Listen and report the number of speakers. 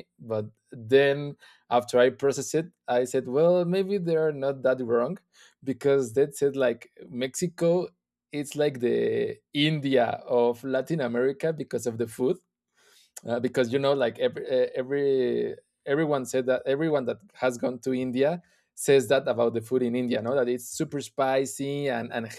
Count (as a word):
one